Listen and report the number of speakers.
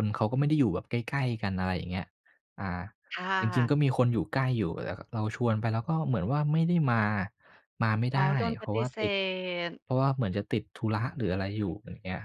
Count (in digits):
2